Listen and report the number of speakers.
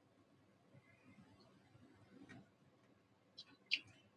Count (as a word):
zero